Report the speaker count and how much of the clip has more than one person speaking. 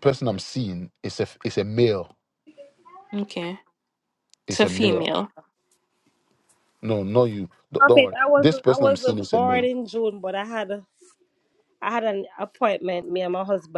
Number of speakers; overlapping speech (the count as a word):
three, about 18%